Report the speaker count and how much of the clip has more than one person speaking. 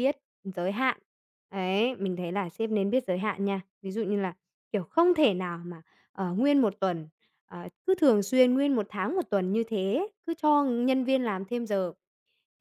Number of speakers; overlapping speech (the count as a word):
one, no overlap